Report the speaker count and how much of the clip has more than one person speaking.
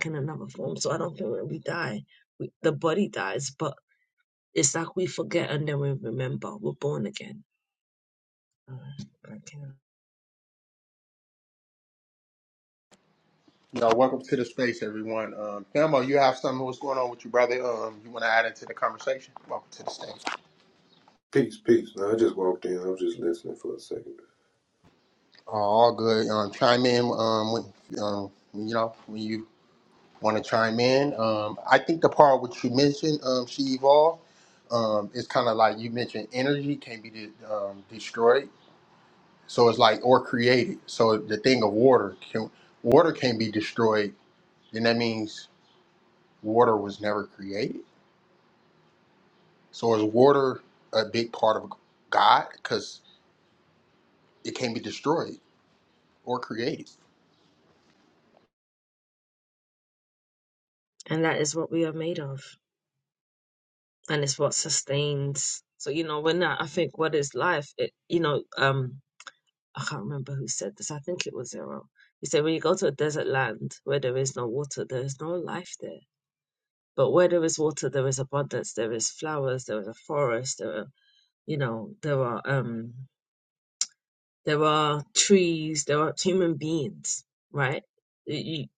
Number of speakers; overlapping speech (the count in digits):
3, no overlap